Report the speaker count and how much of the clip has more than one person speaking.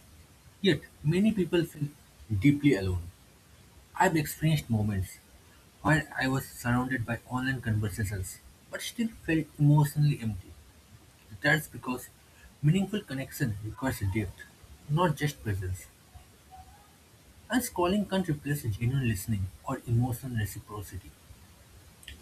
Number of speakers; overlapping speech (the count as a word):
one, no overlap